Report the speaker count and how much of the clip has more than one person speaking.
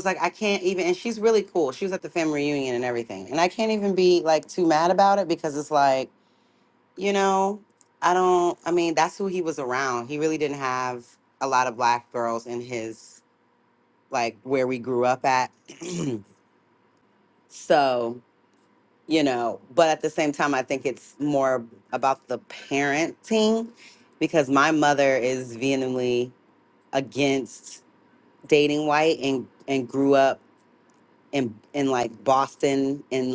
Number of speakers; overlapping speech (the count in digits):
1, no overlap